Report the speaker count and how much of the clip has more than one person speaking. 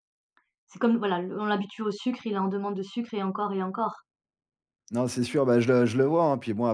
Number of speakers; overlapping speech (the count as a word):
two, no overlap